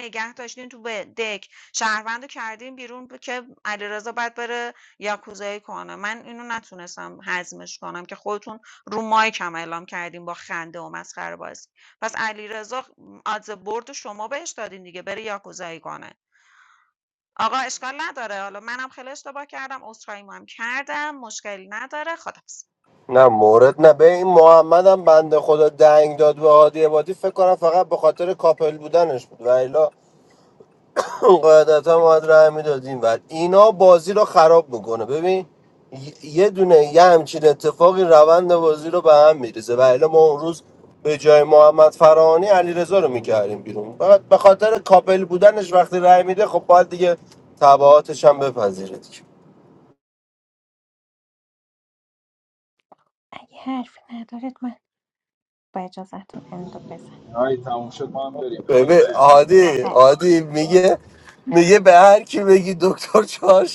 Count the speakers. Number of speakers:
four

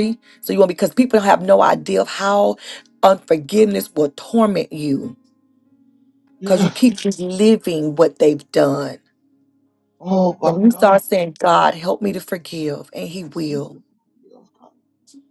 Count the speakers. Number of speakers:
two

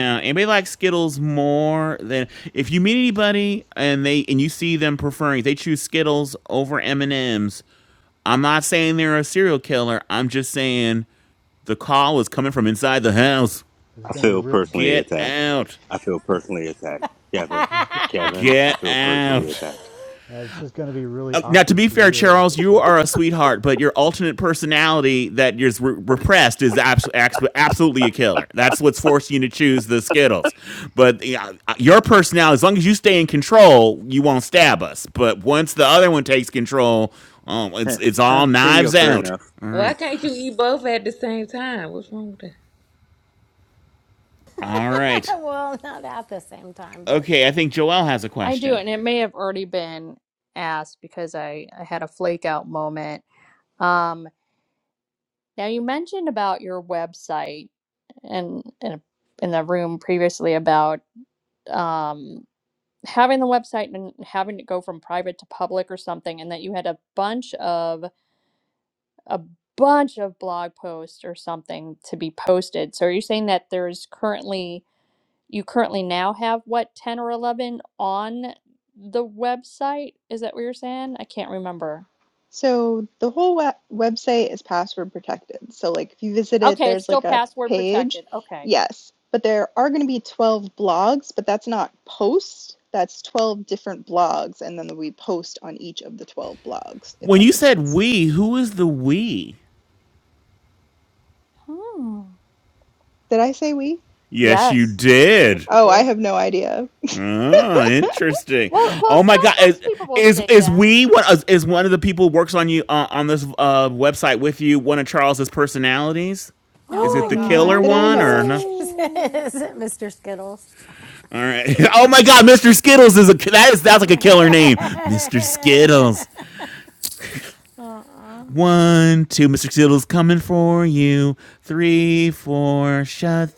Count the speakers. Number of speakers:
seven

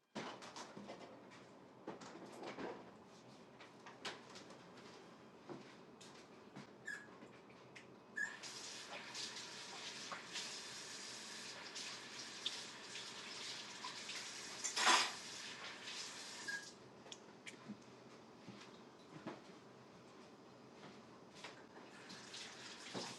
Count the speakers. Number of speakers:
zero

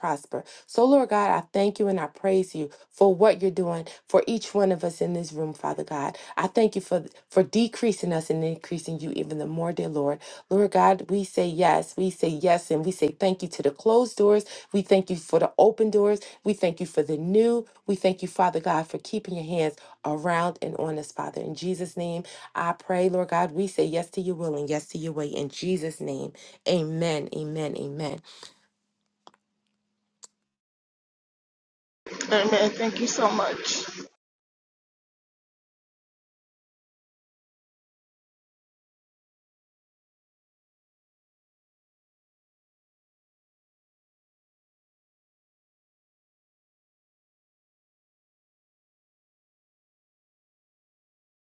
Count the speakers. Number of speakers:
two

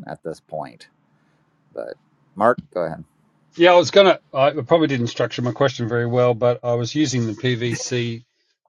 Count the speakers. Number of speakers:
two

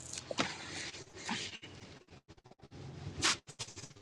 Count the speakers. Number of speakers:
zero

